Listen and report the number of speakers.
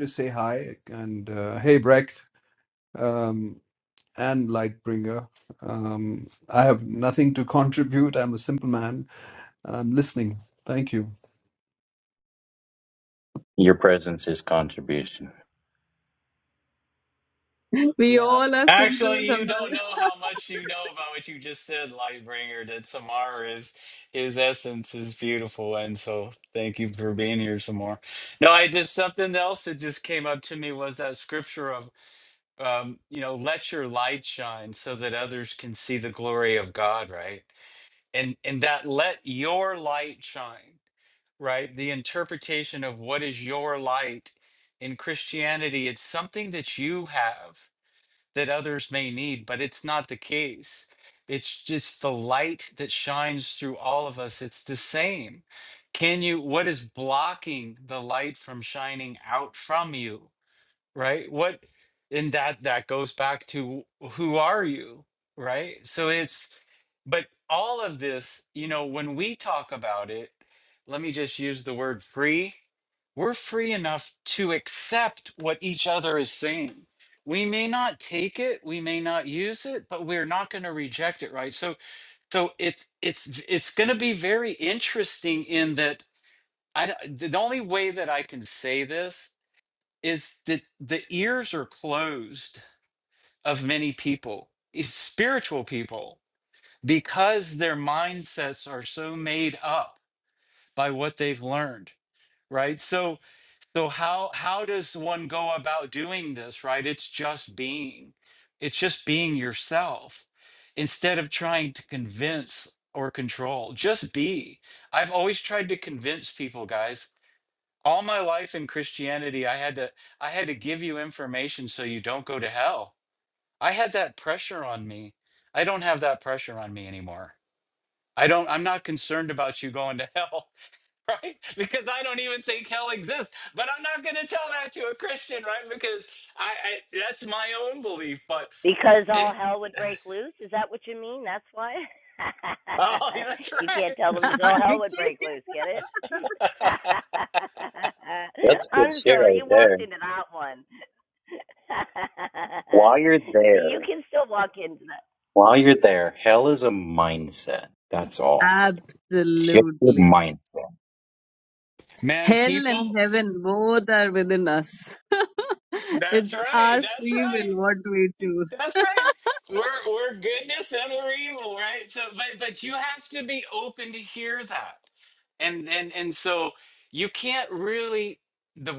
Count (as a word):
five